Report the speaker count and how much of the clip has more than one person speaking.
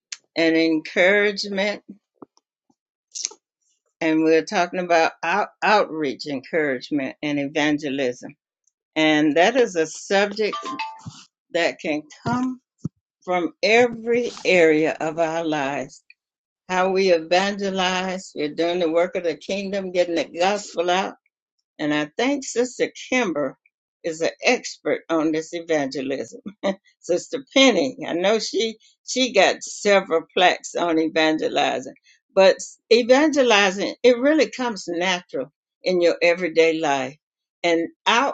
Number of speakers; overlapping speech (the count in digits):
1, no overlap